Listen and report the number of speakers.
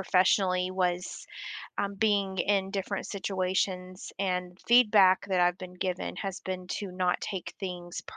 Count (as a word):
one